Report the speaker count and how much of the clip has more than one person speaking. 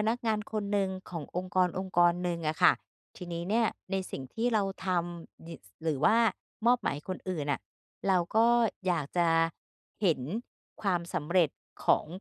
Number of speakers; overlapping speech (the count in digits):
1, no overlap